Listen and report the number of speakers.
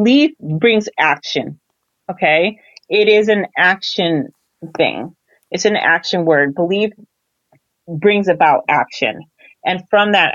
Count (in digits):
1